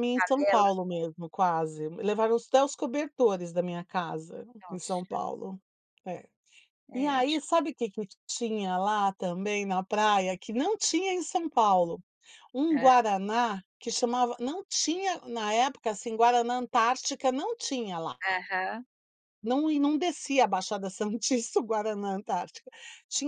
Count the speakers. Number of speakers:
two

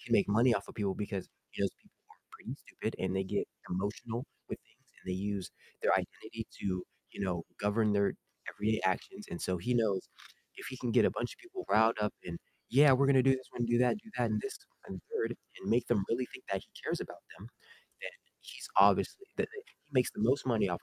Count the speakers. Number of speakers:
one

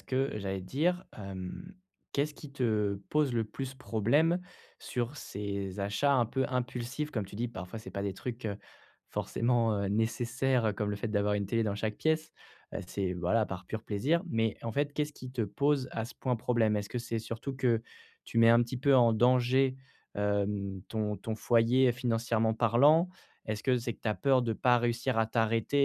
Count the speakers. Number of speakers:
one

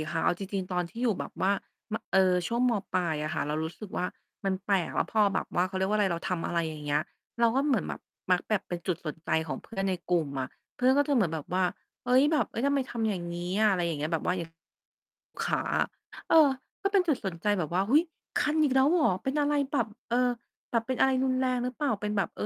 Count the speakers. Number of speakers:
one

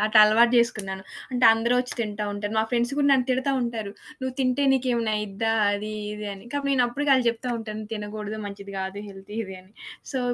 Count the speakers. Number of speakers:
one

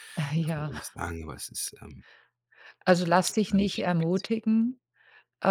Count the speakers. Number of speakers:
two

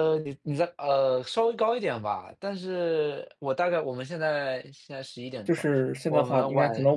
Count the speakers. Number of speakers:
two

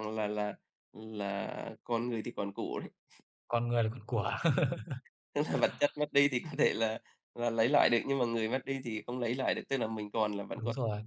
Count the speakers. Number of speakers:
two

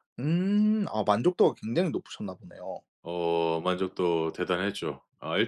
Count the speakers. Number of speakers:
two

